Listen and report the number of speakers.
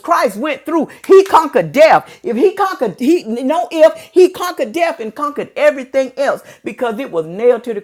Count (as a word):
one